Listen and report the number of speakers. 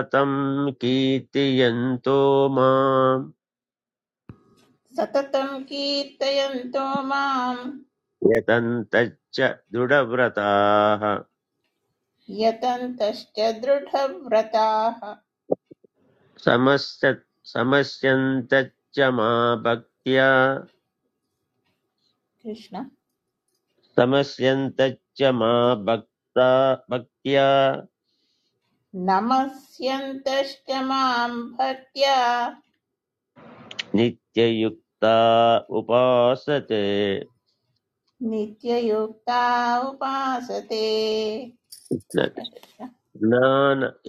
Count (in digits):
2